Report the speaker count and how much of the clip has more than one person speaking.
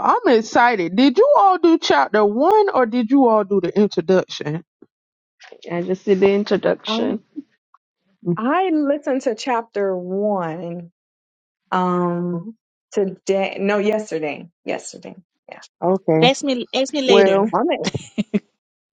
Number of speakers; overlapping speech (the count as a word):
four, about 4%